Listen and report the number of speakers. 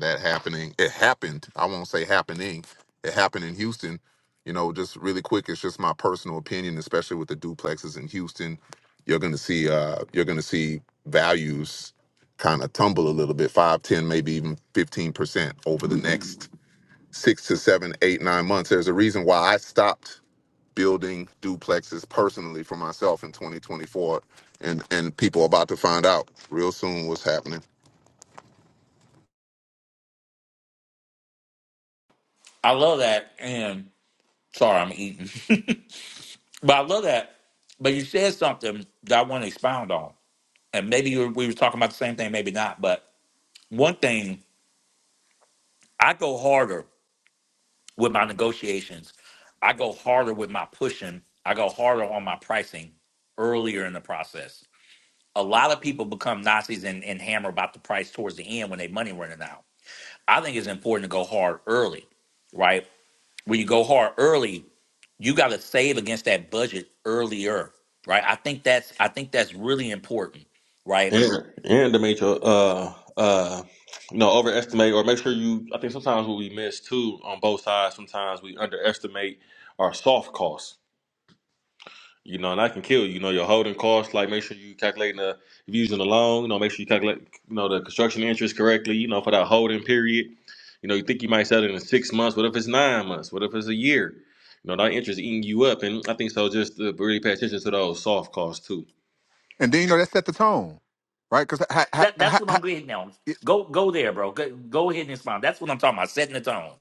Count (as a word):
four